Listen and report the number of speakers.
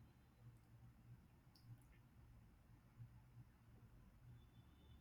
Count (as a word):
zero